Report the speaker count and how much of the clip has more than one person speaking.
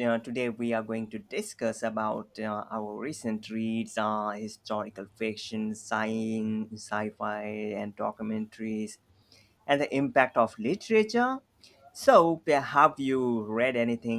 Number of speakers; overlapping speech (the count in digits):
1, no overlap